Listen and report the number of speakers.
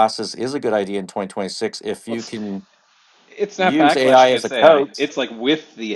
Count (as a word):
two